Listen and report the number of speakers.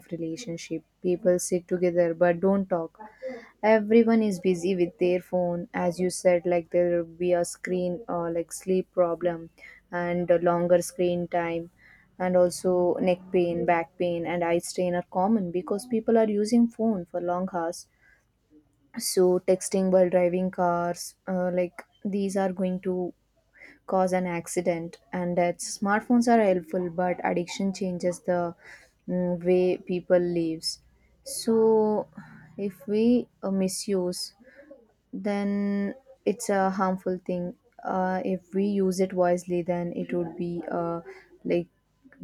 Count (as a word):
one